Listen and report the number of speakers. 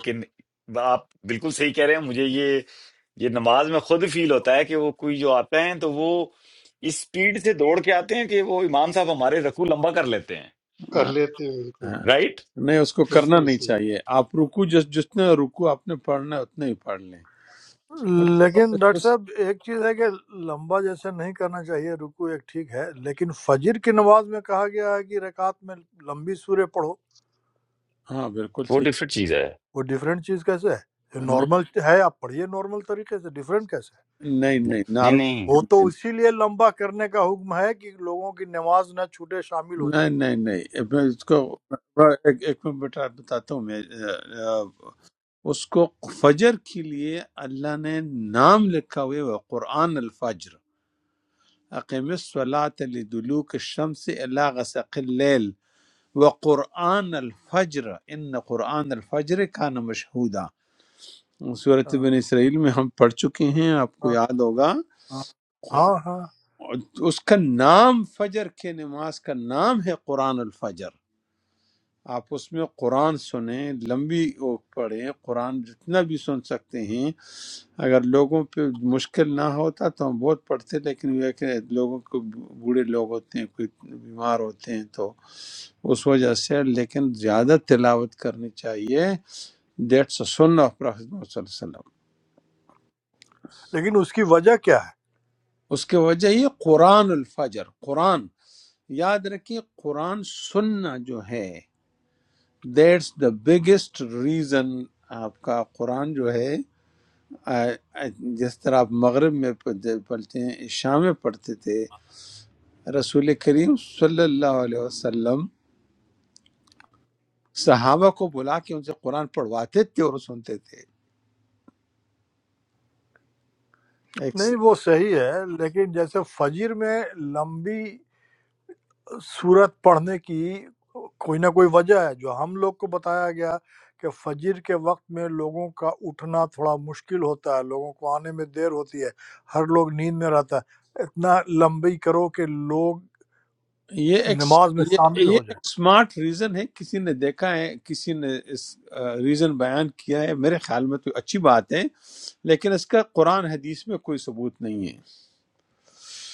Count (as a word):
four